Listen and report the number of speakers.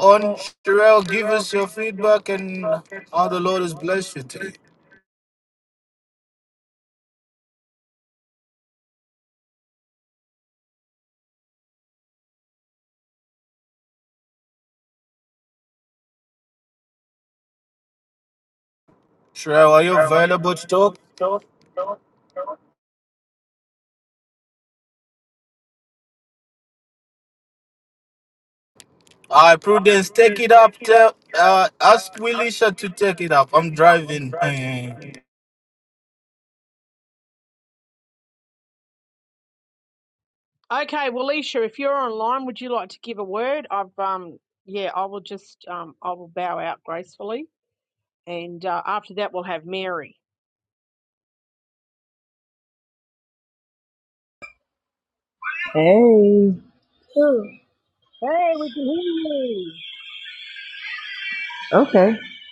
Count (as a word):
three